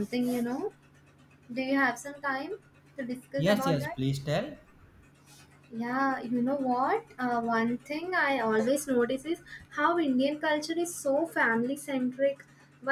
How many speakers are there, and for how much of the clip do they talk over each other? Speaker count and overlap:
two, about 4%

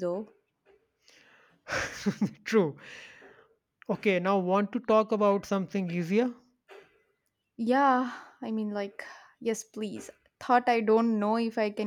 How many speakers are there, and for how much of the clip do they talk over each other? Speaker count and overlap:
two, no overlap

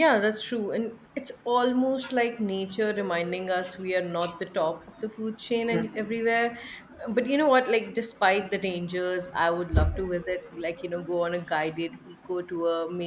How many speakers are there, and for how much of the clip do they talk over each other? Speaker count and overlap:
one, no overlap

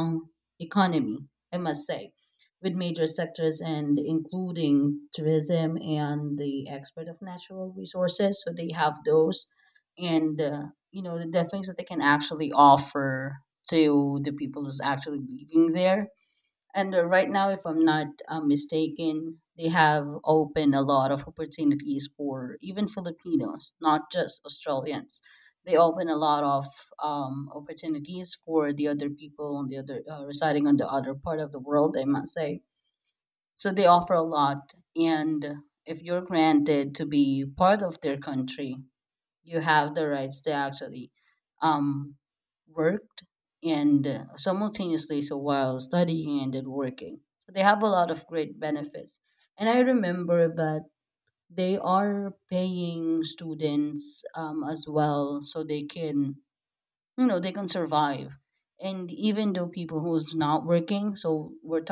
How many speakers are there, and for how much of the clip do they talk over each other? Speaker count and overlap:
one, no overlap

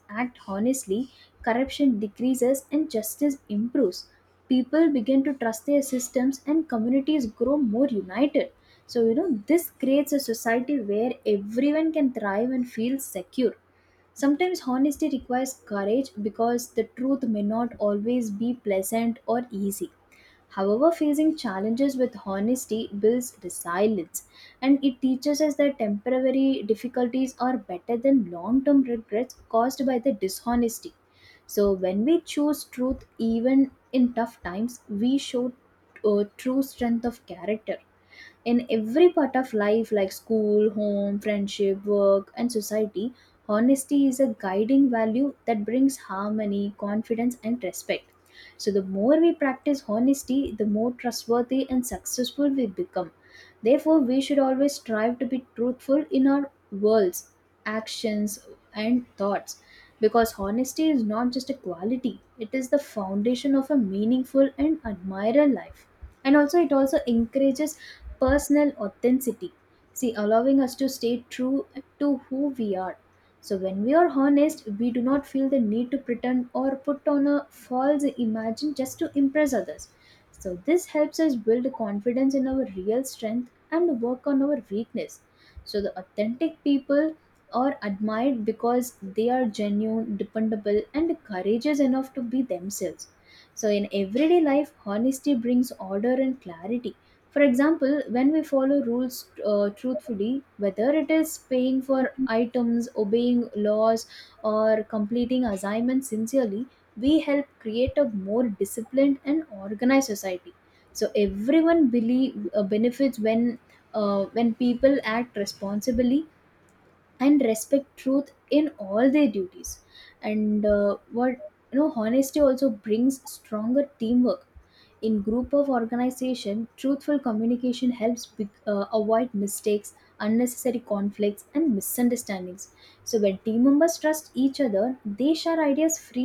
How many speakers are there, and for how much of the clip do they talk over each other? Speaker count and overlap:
one, no overlap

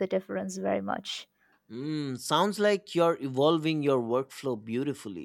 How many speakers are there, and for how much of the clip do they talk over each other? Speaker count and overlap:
two, no overlap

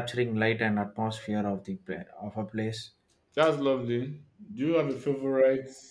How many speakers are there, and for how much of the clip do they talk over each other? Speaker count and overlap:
two, no overlap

